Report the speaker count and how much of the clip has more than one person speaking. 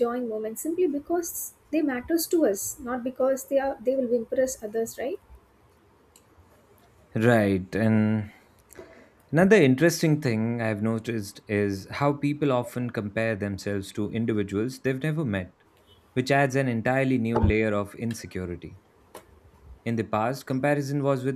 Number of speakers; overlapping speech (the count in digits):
2, no overlap